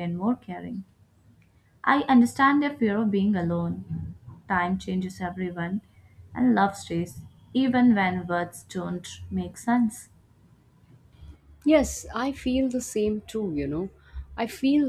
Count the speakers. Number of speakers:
two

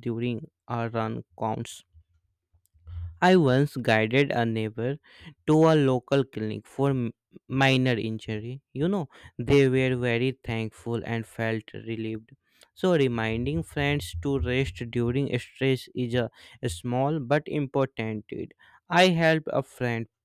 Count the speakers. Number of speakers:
one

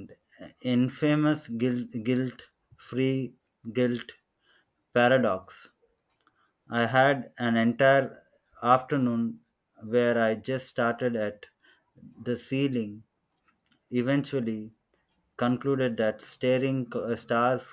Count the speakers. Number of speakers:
one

